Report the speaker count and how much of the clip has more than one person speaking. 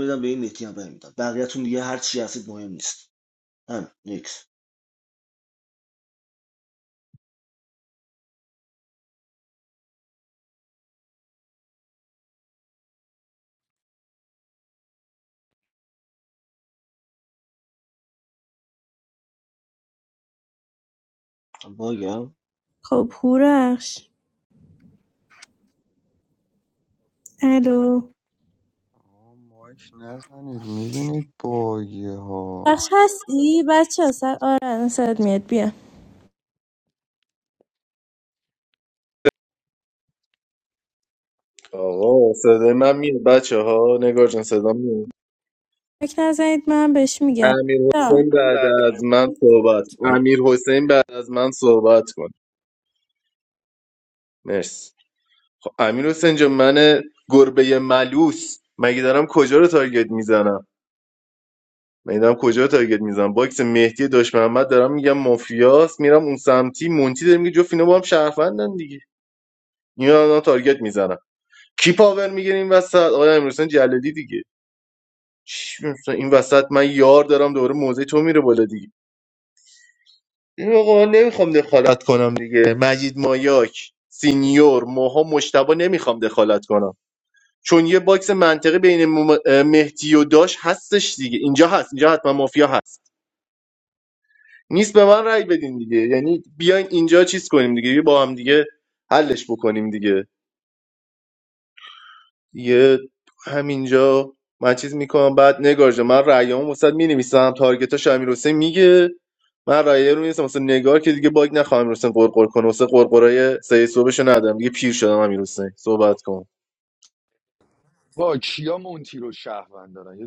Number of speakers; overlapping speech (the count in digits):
5, under 1%